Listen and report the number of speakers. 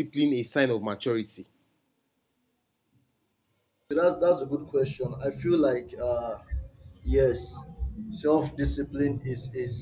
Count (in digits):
2